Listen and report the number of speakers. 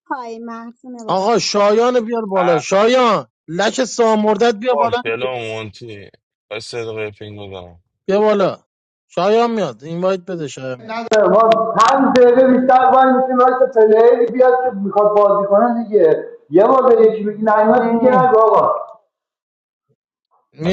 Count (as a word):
four